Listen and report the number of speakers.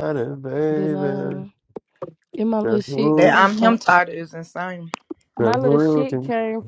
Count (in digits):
3